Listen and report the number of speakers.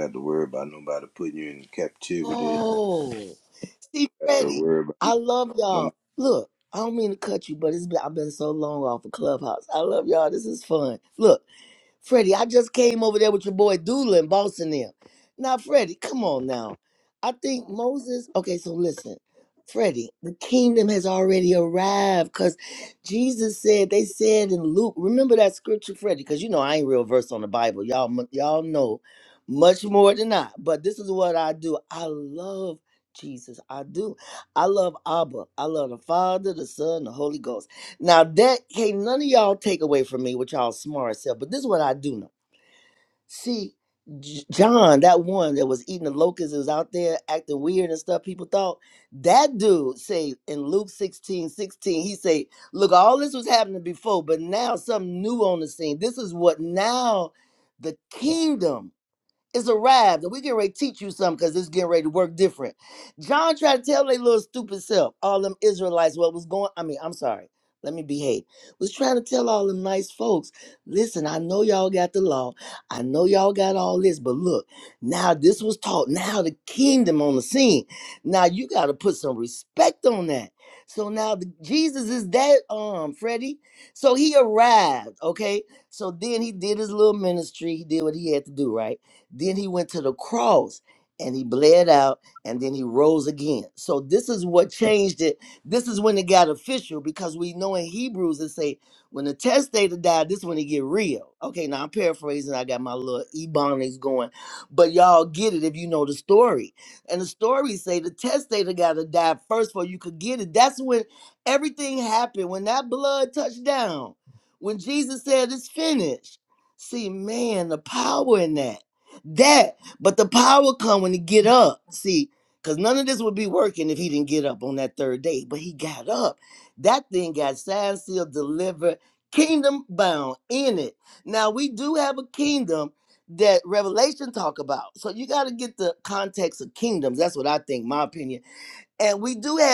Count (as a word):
two